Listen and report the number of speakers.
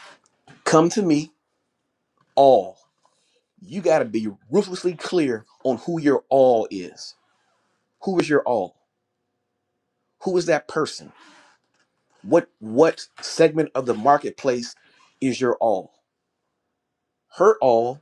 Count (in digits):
1